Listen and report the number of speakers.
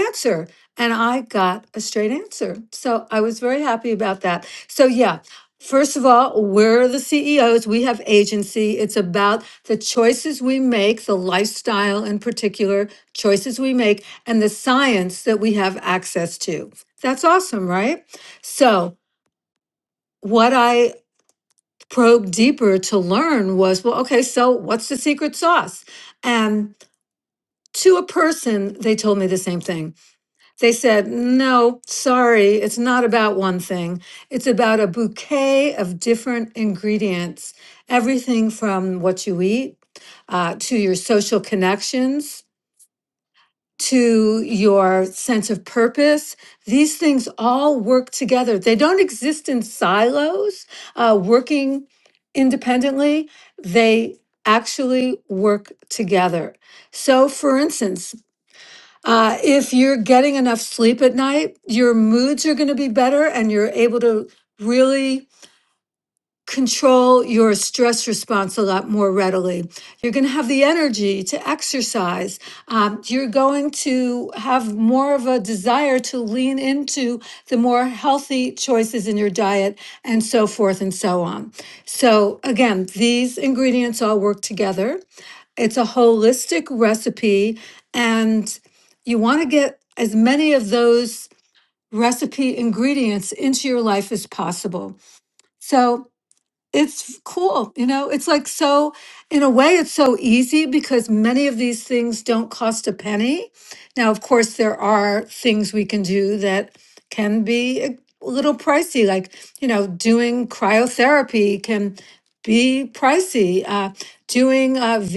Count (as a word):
one